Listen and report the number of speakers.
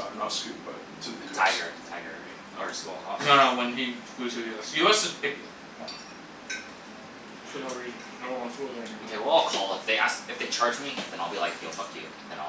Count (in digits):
4